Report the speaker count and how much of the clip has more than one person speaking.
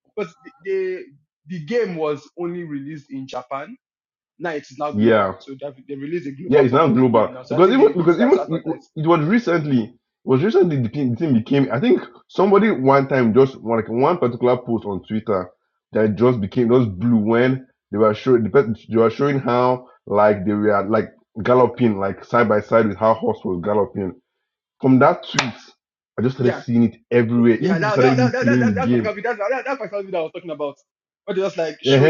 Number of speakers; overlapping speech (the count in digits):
2, about 15%